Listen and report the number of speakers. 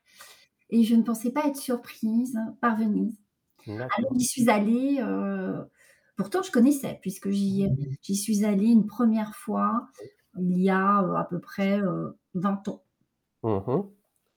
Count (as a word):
two